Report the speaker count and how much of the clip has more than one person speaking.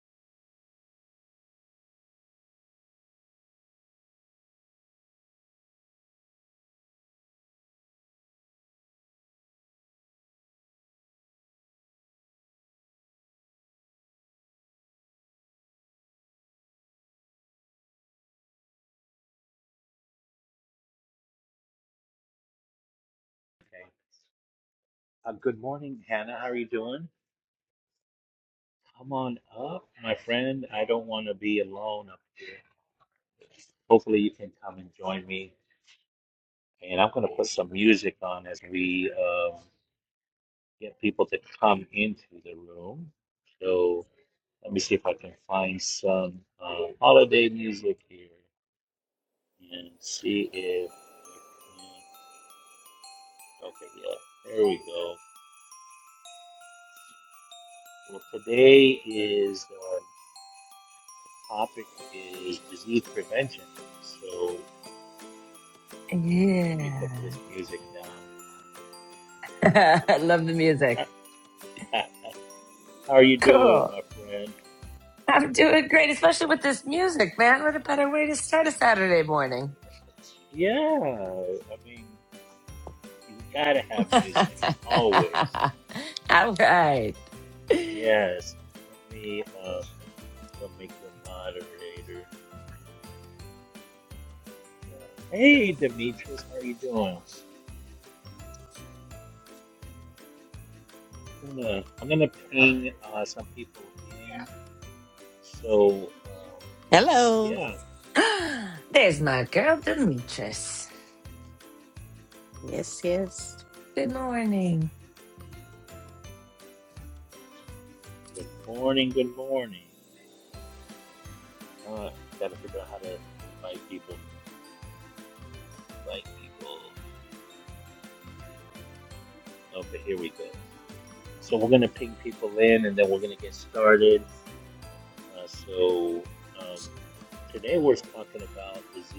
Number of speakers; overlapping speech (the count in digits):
3, about 1%